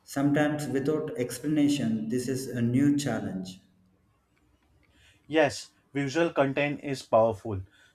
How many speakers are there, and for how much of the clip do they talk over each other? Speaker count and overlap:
two, no overlap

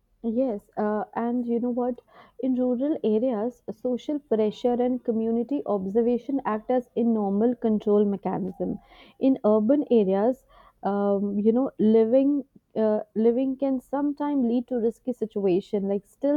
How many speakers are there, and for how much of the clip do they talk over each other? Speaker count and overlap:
one, no overlap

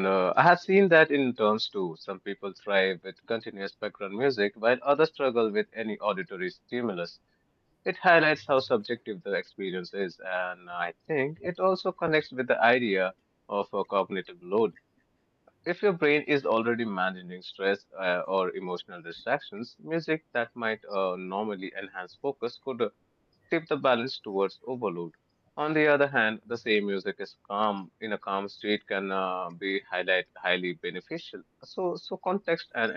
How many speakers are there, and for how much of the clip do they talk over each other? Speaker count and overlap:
one, no overlap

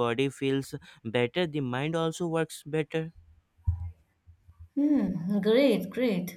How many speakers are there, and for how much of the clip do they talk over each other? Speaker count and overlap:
two, no overlap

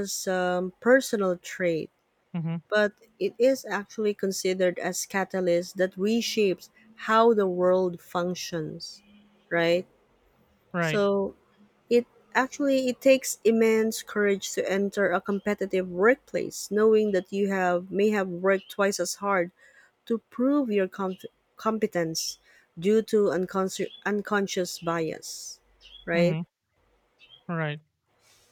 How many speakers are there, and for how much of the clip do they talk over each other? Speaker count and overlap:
two, about 1%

